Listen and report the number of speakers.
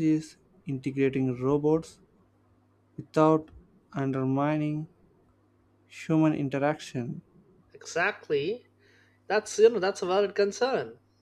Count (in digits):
2